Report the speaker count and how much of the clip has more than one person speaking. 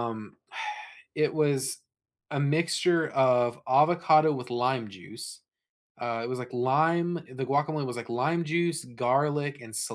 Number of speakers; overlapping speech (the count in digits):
1, no overlap